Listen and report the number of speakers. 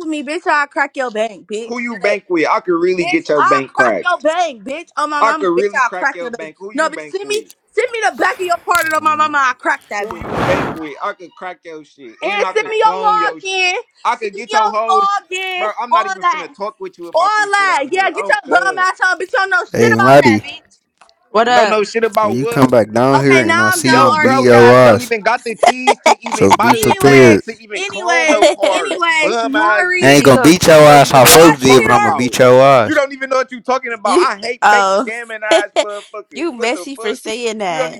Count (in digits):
4